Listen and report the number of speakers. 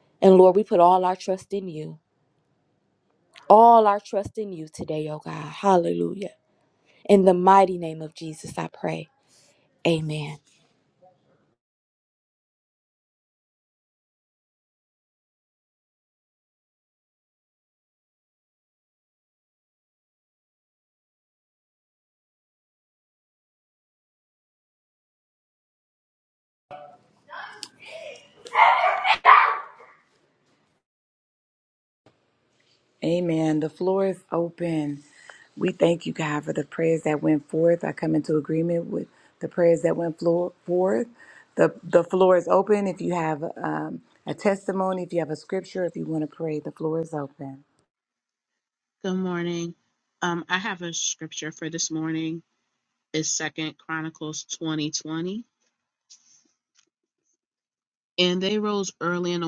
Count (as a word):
three